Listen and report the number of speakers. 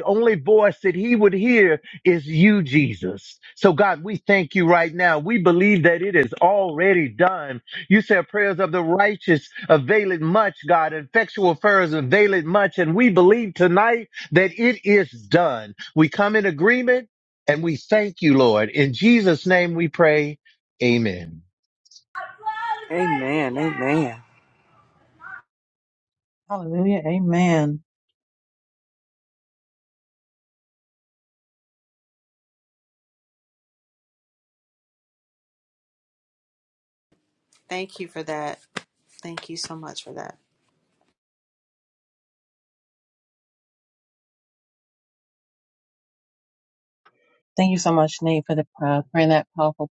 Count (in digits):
4